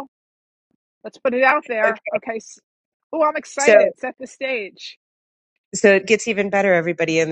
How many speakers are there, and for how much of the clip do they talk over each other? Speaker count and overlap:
2, about 4%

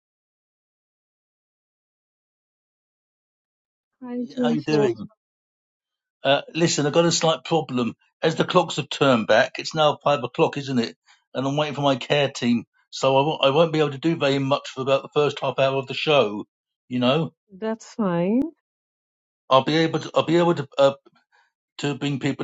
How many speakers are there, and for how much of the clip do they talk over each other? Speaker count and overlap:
2, about 2%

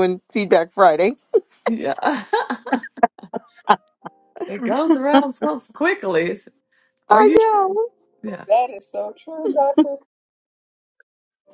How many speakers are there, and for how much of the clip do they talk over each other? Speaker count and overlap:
3, about 3%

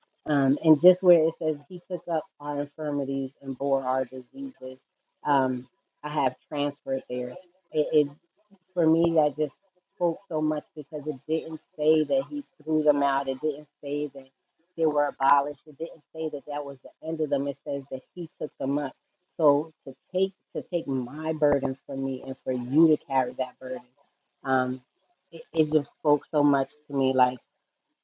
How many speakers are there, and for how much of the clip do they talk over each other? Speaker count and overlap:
1, no overlap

